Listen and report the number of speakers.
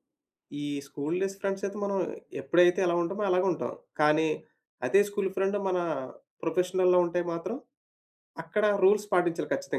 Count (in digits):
1